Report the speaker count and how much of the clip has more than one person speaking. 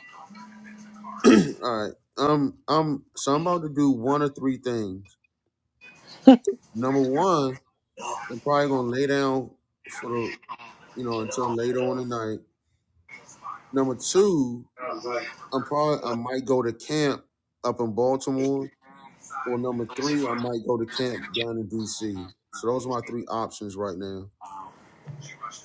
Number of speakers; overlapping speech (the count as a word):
one, no overlap